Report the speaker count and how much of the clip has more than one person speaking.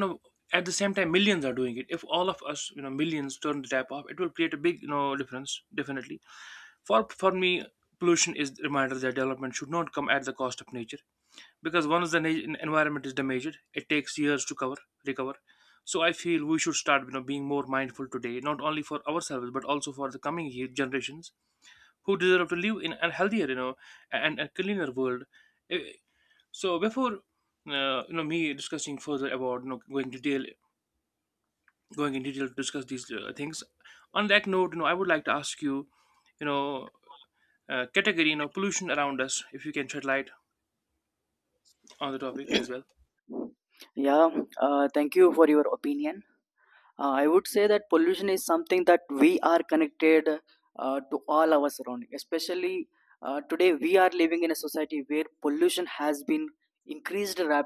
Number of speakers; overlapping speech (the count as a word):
two, no overlap